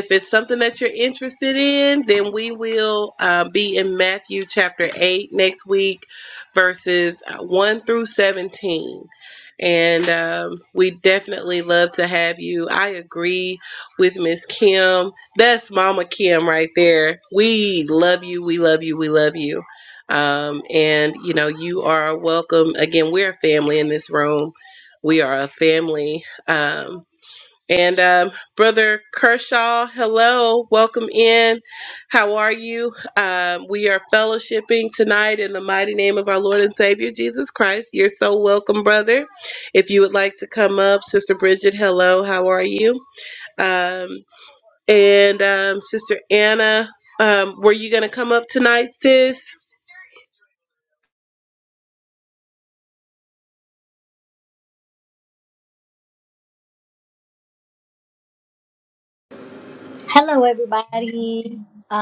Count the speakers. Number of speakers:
2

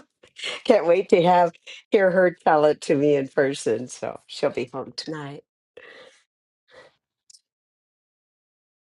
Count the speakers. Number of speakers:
1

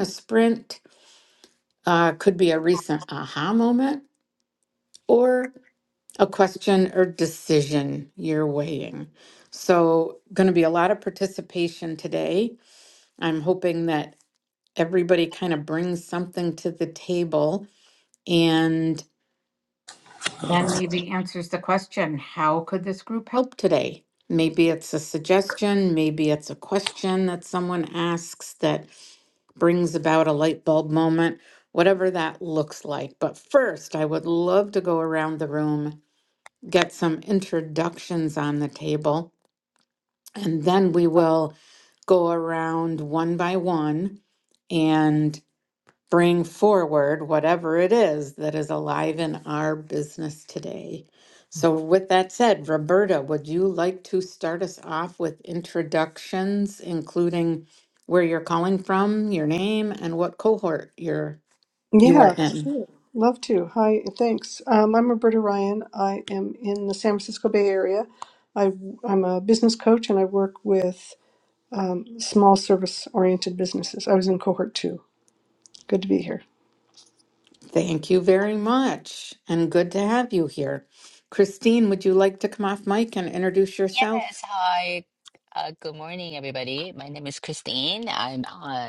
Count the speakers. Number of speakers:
3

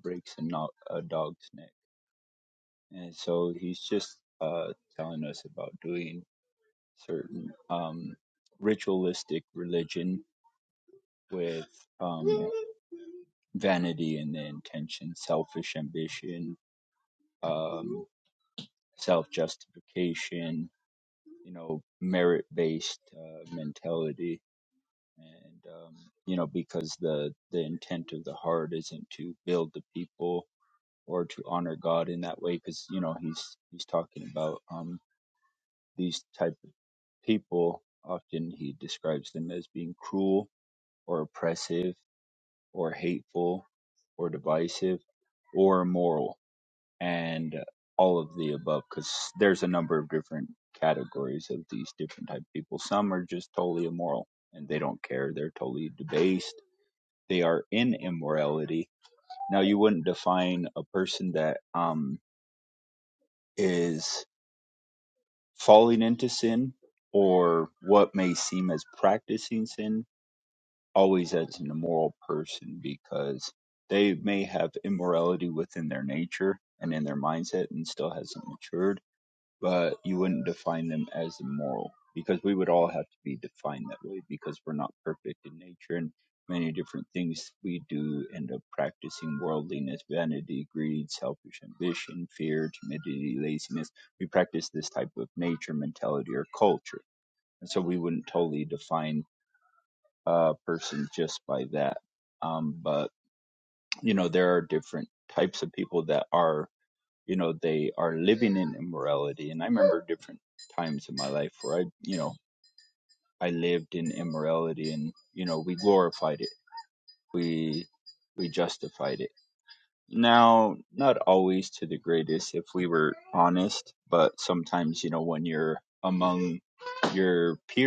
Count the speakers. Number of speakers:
1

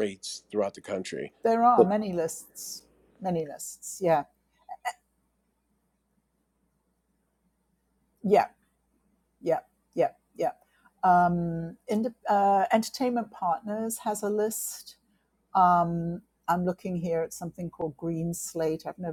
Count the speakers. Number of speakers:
2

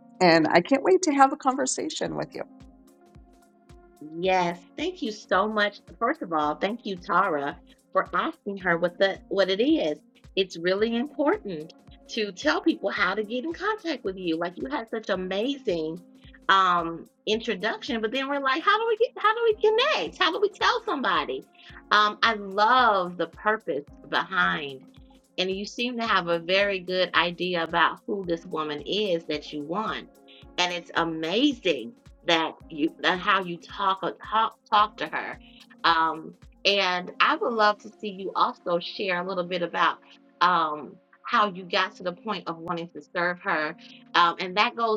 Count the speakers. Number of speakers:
2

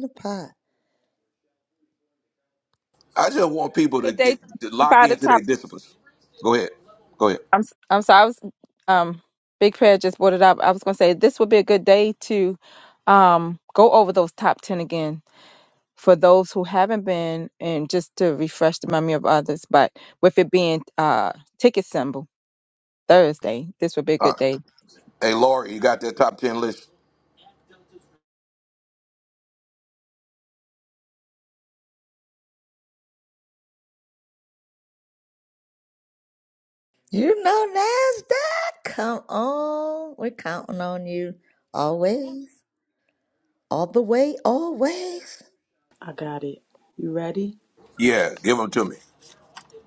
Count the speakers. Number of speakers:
4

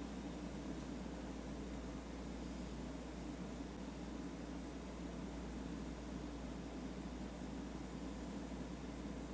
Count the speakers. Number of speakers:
0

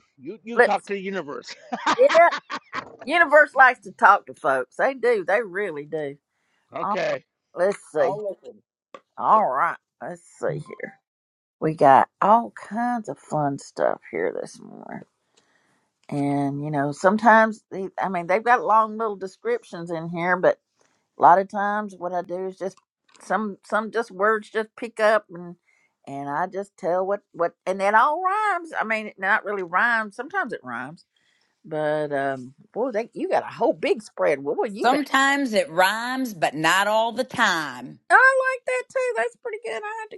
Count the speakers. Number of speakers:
3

